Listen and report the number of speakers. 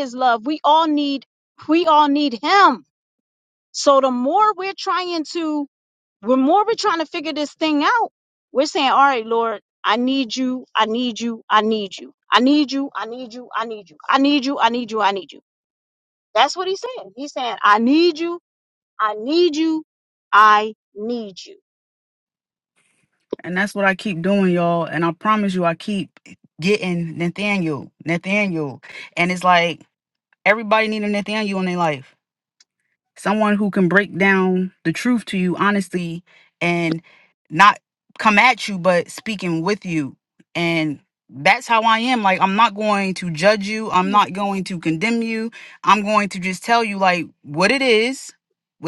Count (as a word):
two